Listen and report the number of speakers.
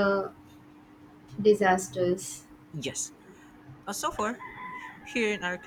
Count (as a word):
two